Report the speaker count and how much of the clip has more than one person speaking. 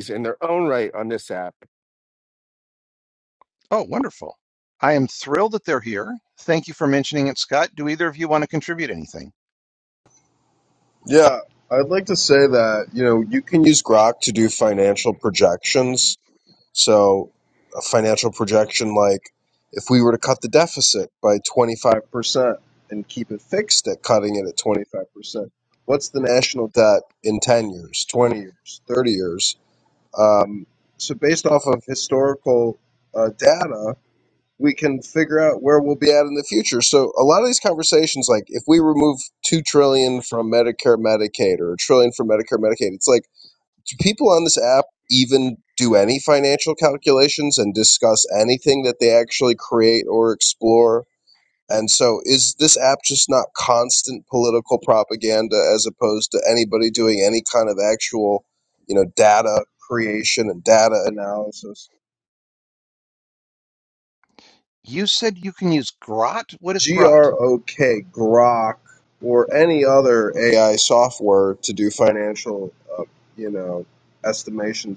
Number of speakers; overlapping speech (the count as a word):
three, about 1%